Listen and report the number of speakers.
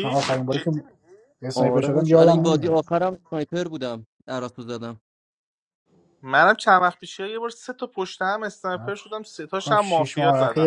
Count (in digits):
3